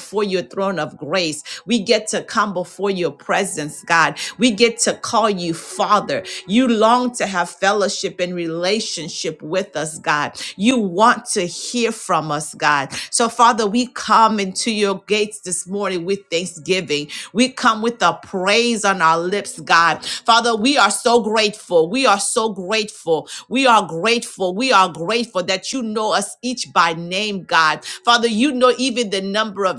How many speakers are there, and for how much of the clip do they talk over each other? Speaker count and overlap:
one, no overlap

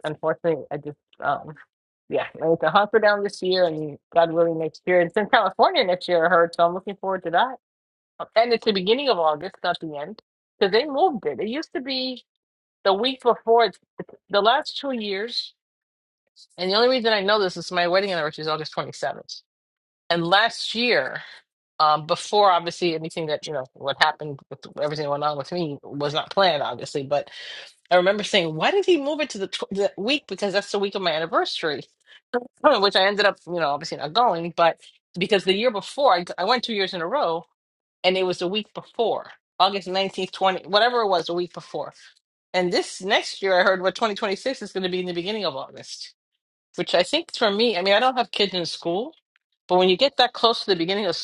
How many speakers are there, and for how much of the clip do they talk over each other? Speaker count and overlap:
one, no overlap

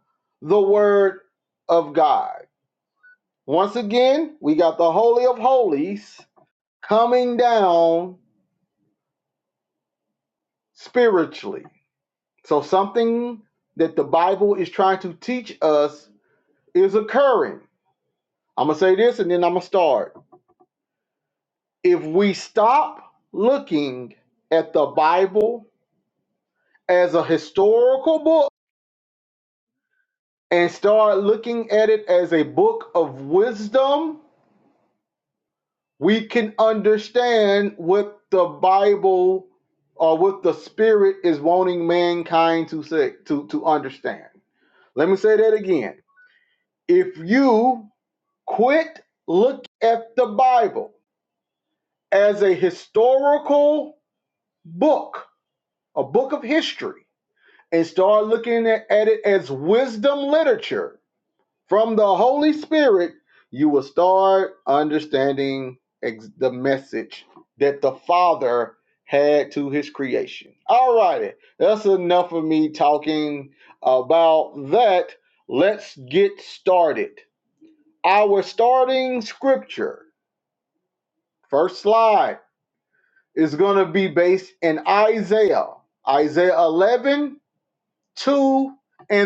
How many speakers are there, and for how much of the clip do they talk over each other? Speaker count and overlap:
one, no overlap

